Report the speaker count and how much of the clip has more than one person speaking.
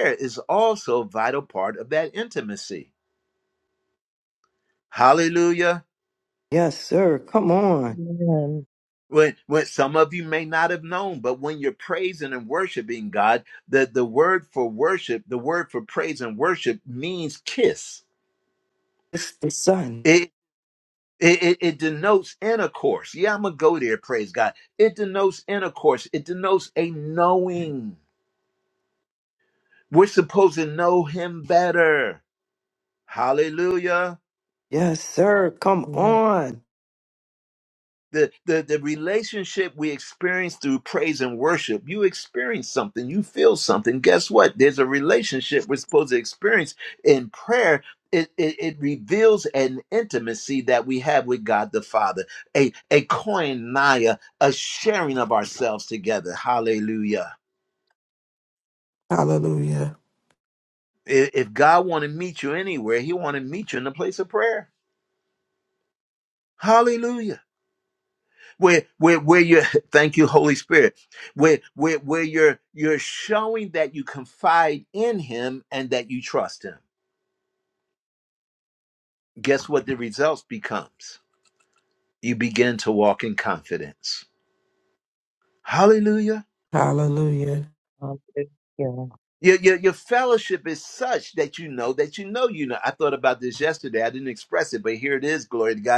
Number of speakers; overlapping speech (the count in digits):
4, under 1%